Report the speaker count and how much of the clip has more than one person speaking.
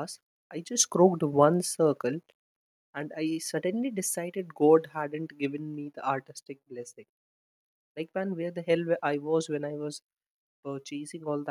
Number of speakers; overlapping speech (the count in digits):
1, no overlap